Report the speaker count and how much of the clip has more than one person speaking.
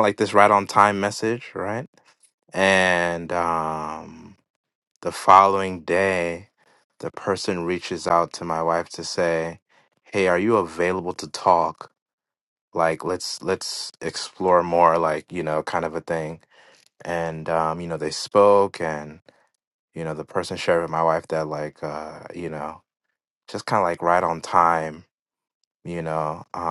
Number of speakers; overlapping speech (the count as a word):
one, no overlap